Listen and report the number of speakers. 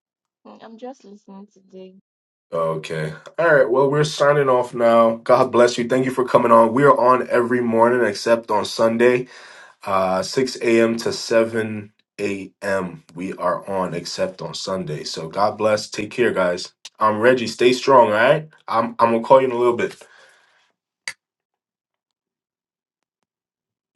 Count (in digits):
2